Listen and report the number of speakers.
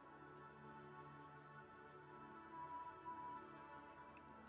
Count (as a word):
zero